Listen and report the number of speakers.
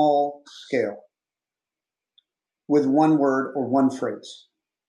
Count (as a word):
one